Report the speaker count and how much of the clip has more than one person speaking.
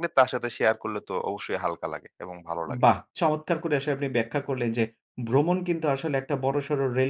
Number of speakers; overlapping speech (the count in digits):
2, about 1%